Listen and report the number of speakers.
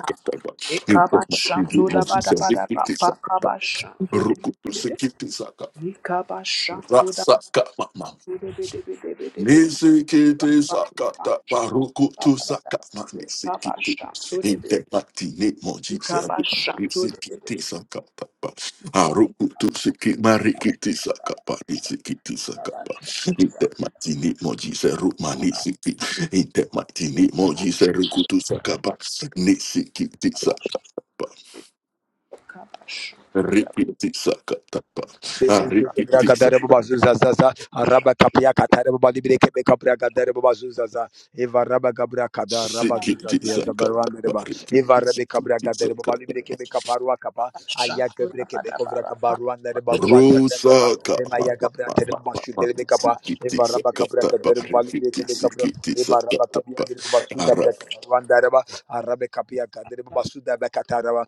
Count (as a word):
three